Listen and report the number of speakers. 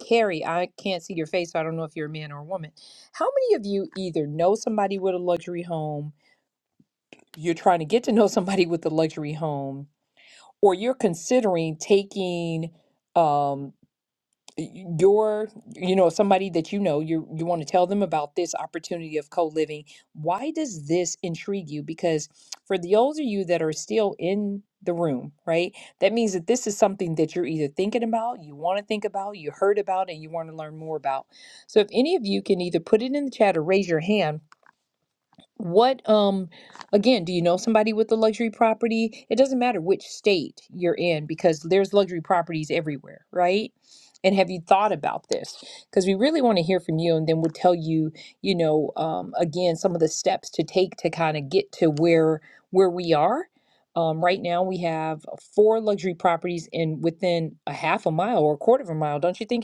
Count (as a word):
one